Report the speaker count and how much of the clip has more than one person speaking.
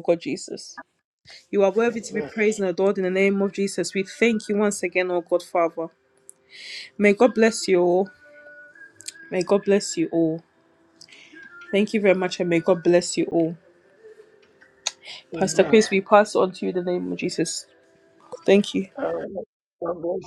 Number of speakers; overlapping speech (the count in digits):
2, about 3%